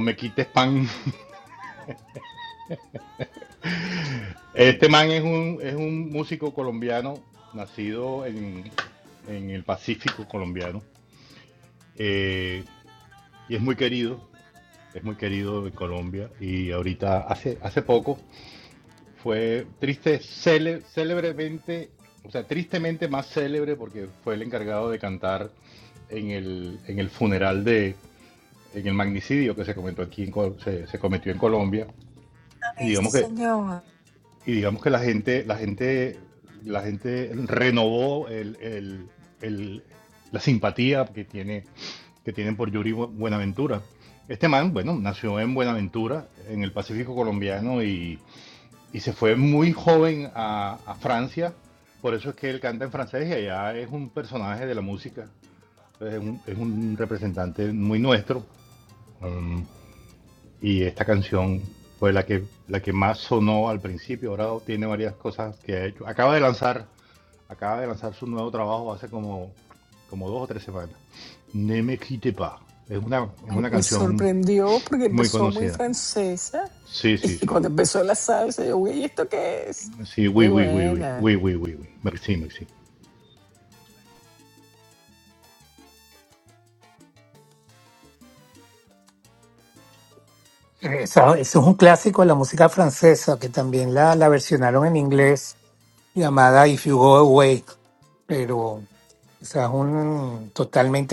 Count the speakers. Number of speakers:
3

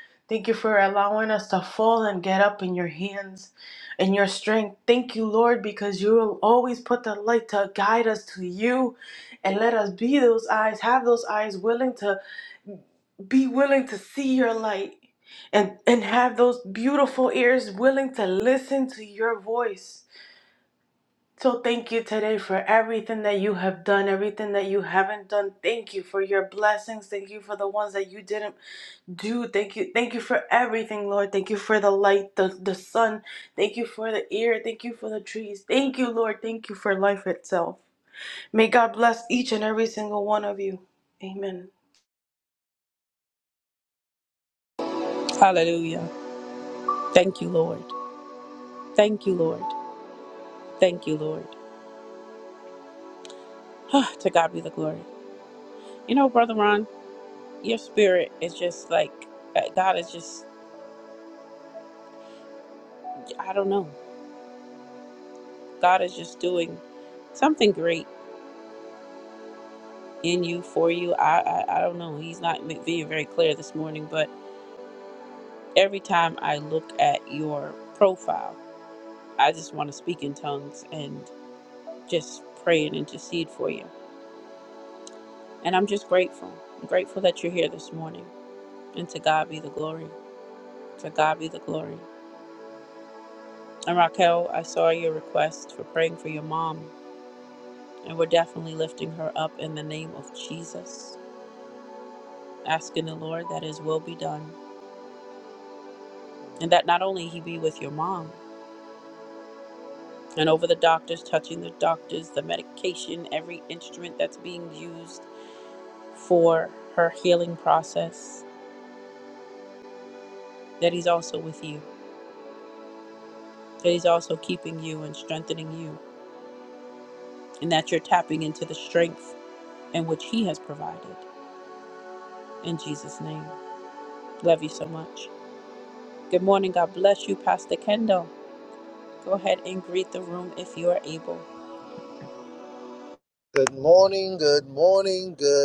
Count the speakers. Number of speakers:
3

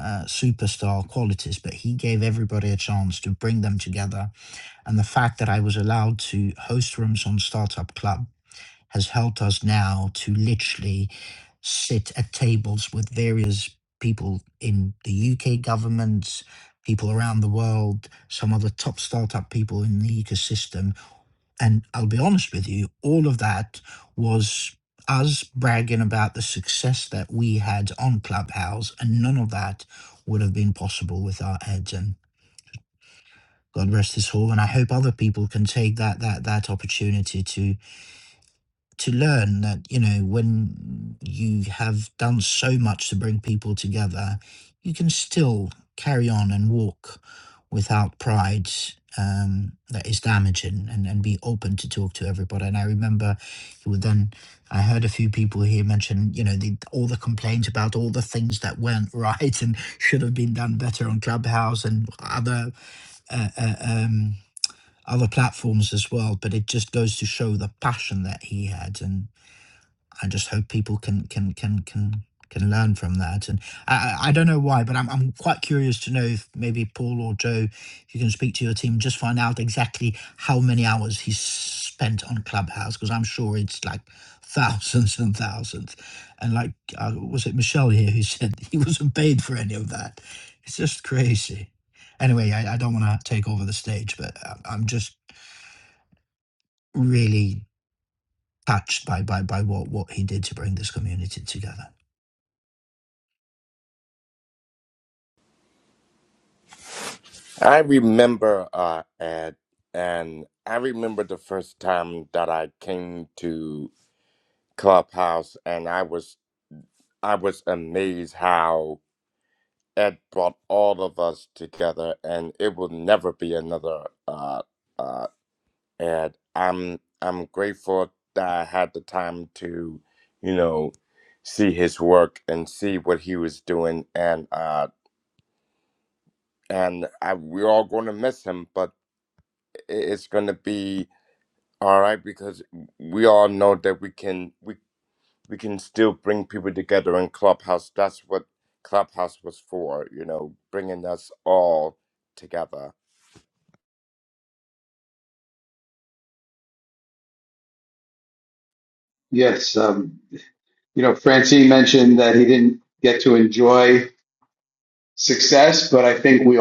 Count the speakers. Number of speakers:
3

